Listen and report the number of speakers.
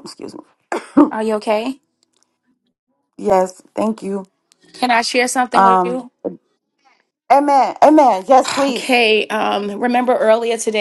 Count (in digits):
2